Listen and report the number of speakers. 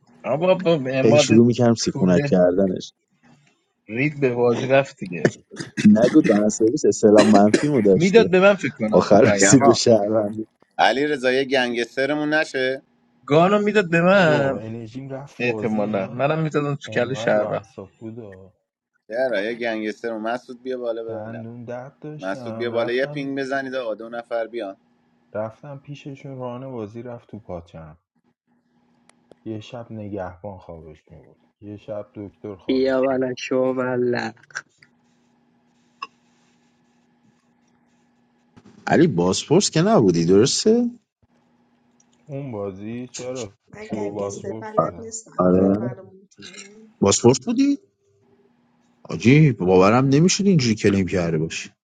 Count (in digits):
6